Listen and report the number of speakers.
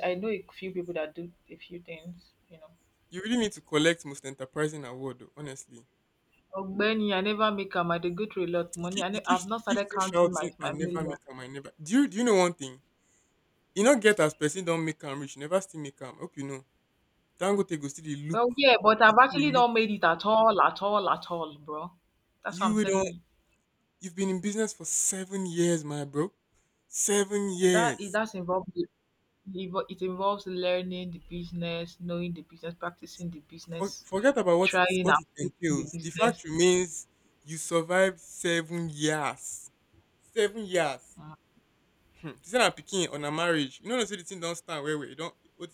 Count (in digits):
2